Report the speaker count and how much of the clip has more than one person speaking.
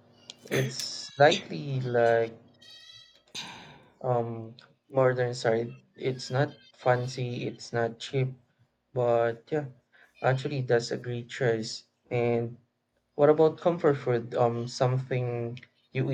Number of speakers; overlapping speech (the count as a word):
one, no overlap